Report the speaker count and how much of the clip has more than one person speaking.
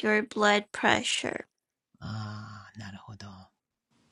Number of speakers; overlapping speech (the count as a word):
two, no overlap